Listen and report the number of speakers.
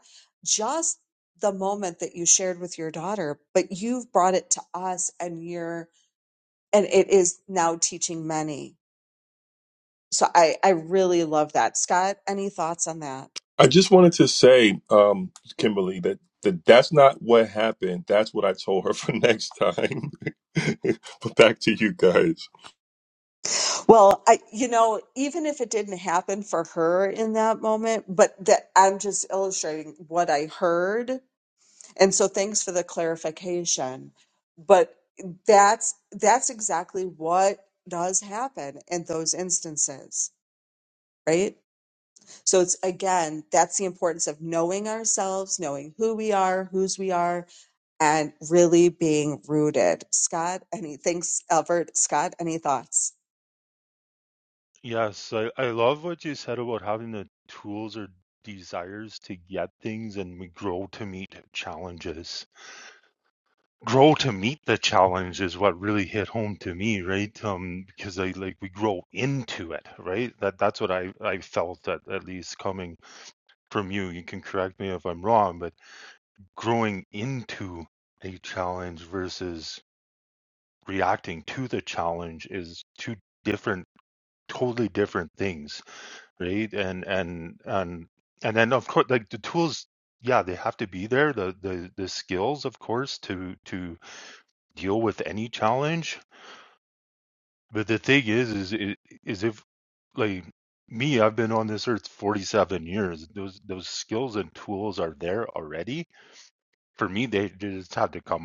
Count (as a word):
three